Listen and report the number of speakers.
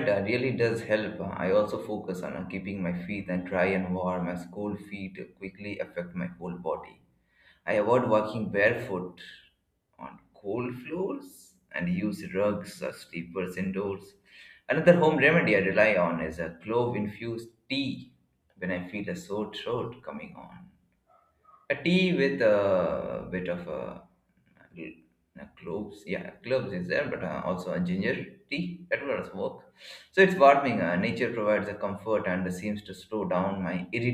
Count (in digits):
1